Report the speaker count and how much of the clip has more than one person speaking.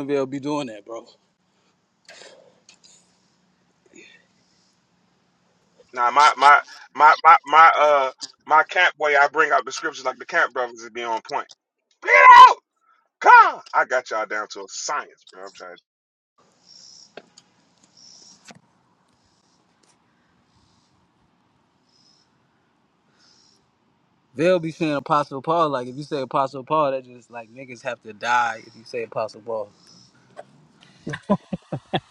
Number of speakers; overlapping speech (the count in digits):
2, no overlap